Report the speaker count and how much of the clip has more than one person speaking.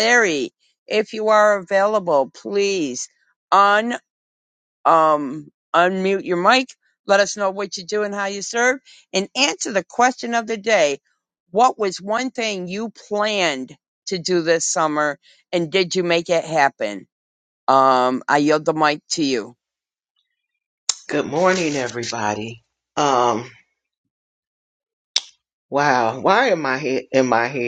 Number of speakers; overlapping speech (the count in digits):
2, no overlap